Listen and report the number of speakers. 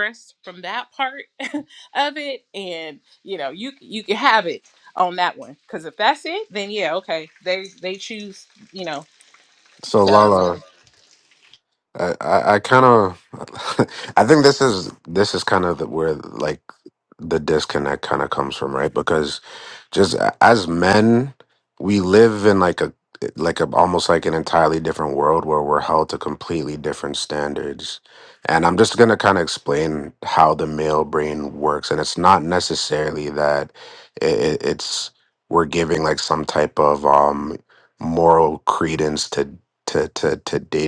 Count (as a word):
two